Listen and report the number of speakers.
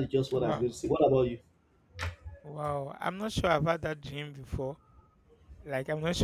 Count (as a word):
two